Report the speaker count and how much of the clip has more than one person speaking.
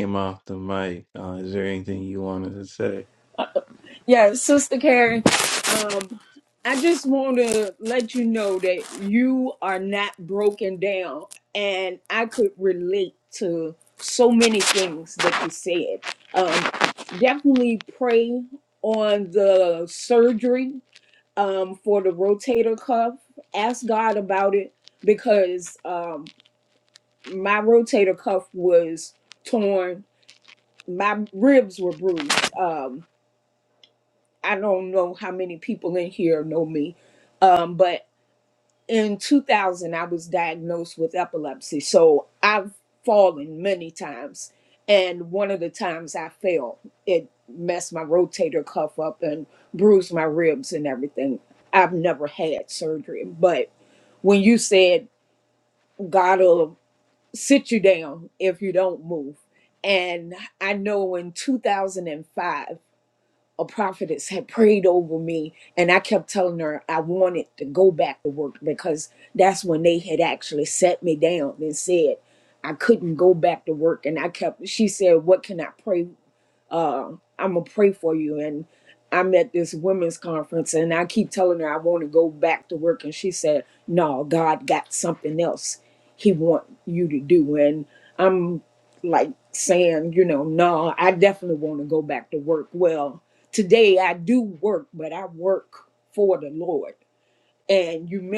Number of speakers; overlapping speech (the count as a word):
two, no overlap